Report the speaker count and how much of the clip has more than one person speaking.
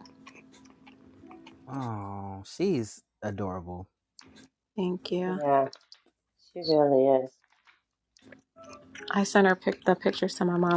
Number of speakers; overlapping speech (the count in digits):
3, about 1%